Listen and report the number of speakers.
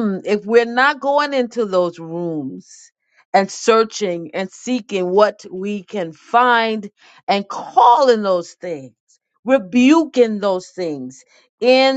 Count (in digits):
1